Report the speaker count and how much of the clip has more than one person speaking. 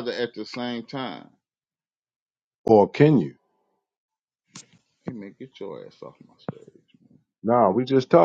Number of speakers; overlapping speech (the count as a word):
two, no overlap